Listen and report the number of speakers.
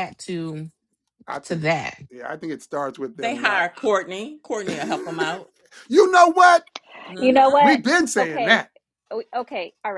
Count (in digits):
4